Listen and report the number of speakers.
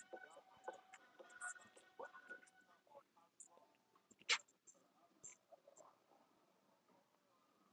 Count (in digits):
0